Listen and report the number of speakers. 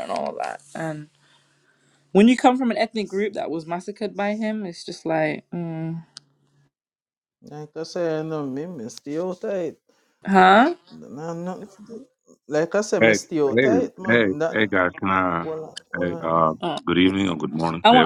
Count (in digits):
3